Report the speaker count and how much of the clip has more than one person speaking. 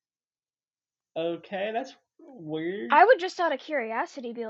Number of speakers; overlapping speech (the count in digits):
2, about 1%